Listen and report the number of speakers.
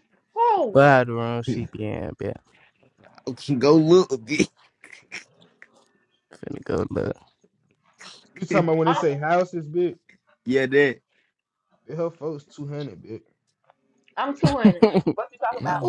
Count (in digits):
4